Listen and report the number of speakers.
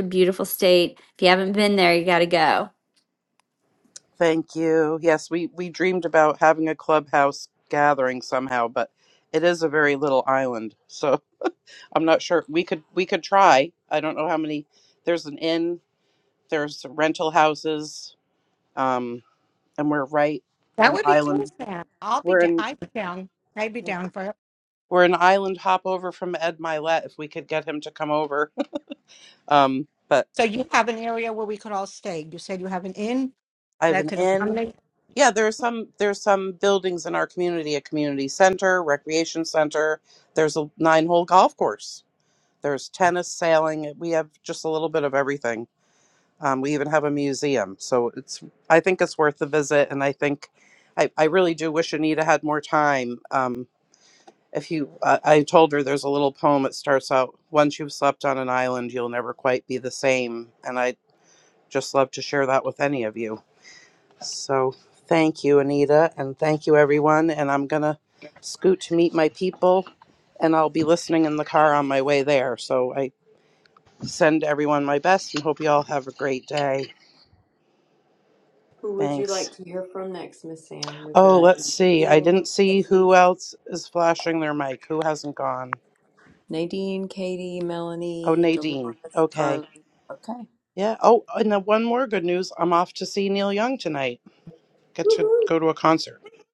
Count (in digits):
4